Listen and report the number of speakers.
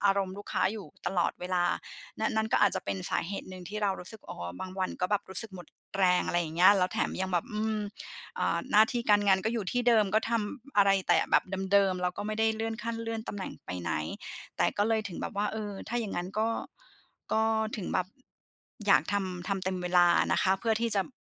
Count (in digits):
1